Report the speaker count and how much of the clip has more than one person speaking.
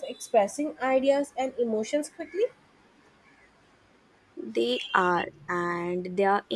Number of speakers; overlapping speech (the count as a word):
two, no overlap